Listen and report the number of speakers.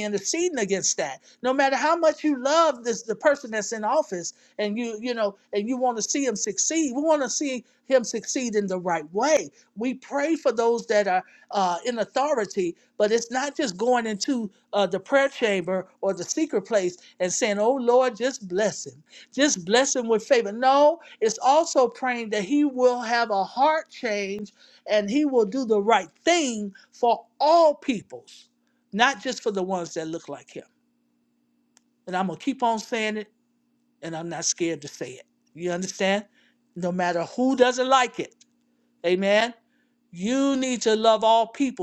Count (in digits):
1